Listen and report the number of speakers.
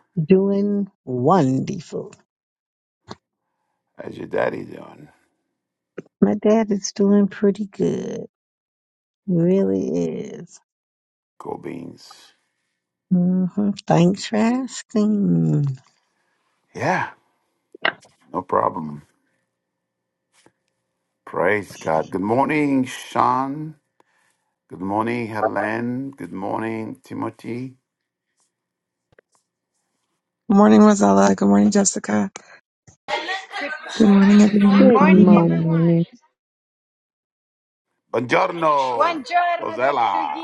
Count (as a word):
four